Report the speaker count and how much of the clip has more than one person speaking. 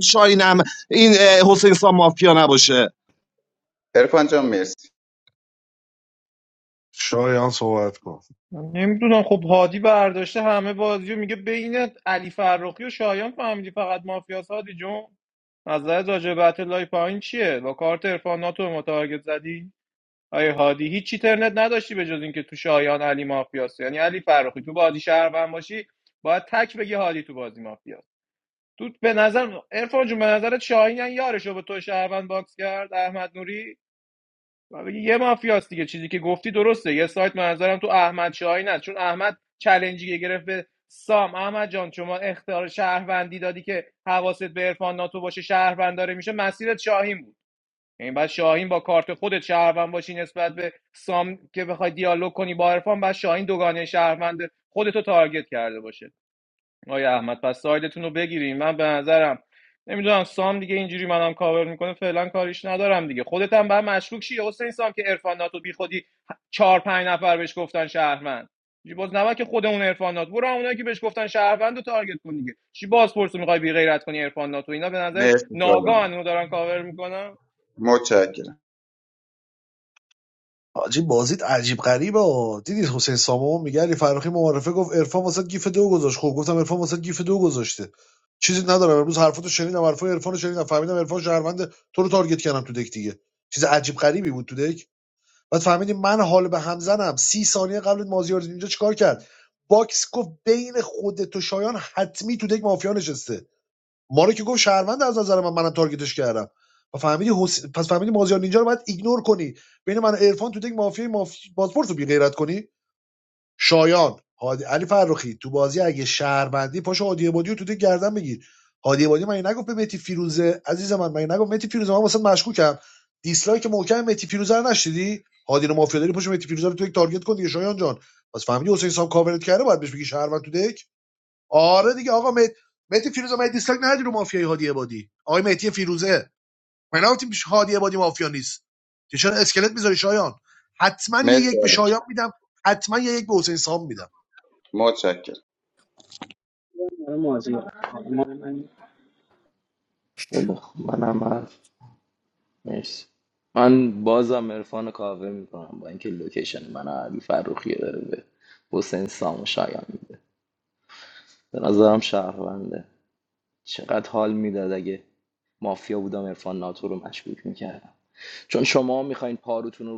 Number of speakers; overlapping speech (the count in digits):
6, about 1%